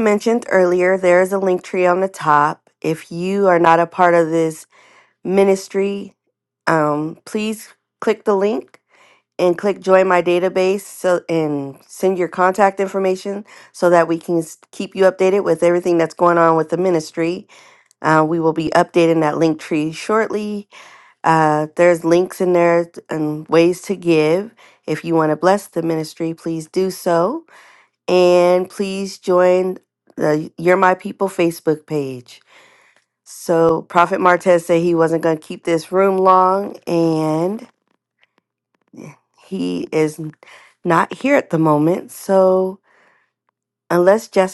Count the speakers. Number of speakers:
1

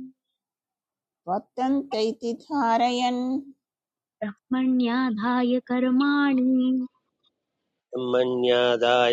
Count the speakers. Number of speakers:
3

